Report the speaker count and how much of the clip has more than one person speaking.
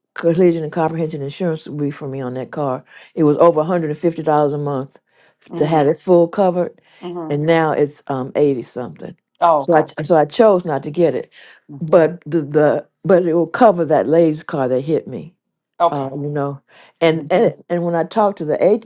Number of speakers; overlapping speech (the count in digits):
2, about 4%